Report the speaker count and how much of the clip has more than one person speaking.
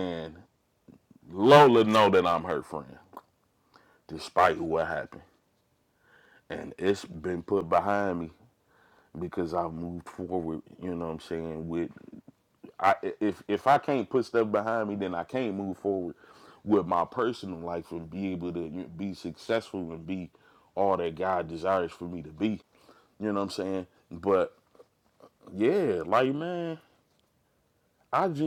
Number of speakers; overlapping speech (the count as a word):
one, no overlap